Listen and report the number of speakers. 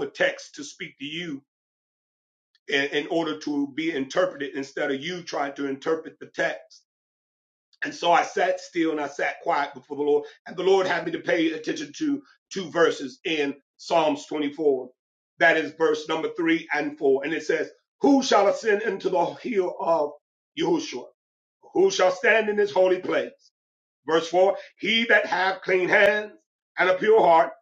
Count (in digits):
1